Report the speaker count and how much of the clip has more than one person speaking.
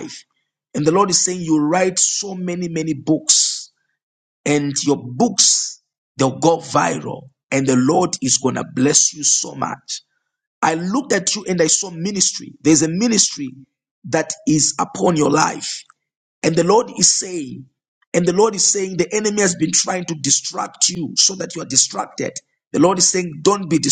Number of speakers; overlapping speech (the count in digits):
1, no overlap